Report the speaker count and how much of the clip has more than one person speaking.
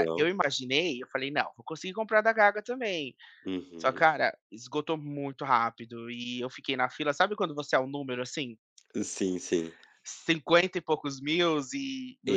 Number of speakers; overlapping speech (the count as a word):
two, about 5%